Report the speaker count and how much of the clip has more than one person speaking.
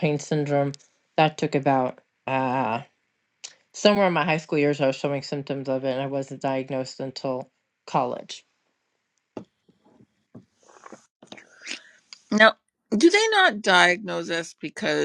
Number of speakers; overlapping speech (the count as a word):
two, no overlap